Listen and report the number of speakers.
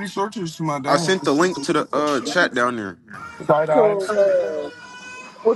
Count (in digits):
3